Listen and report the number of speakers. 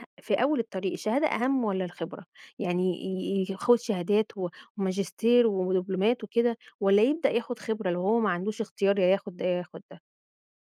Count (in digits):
1